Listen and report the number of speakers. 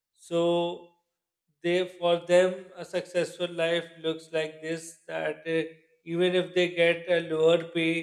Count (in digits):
1